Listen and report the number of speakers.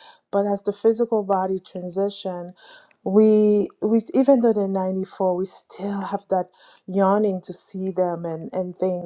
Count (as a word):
one